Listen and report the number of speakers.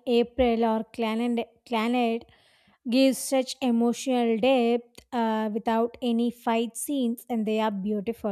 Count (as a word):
one